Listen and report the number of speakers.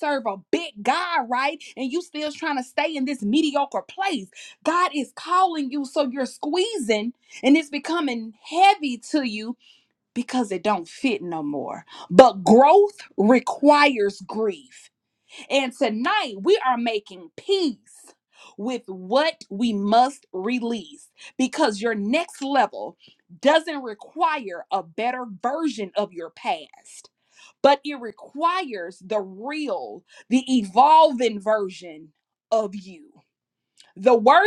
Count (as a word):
one